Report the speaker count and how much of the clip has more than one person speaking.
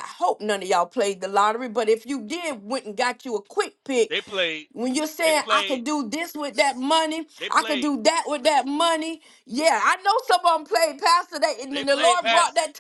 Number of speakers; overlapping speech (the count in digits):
2, about 14%